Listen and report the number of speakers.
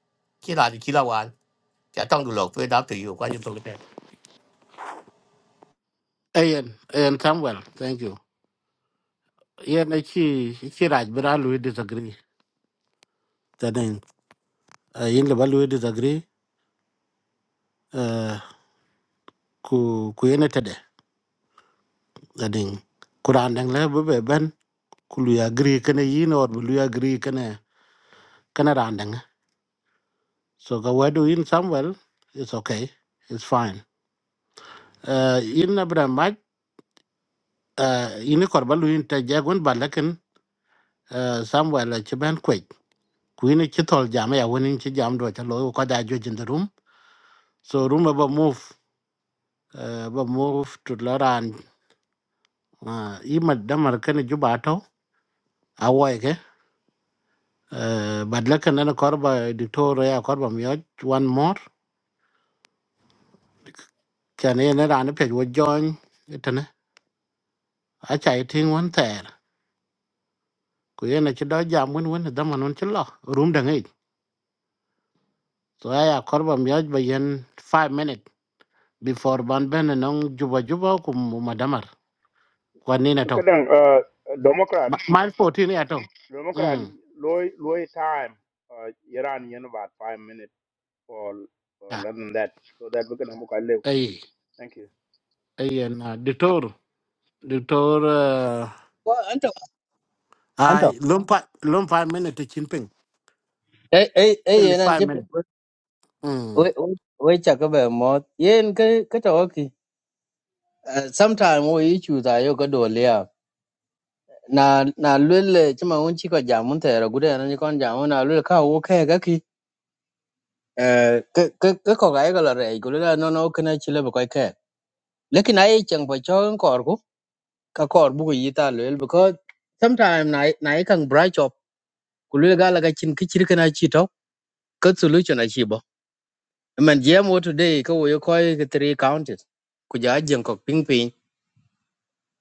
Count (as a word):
four